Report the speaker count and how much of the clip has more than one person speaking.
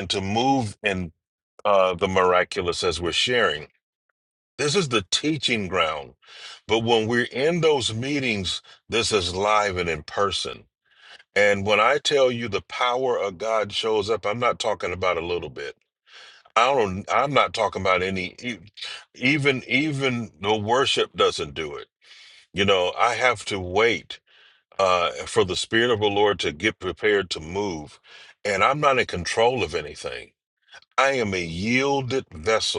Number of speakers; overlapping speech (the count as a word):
one, no overlap